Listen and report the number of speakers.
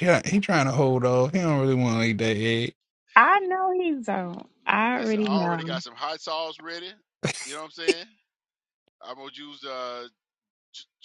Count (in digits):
3